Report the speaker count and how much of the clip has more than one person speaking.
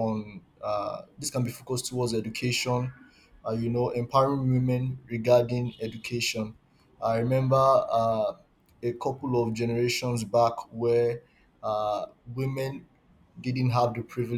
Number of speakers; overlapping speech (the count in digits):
1, no overlap